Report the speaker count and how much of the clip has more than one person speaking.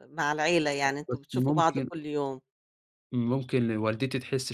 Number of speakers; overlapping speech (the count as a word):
two, about 23%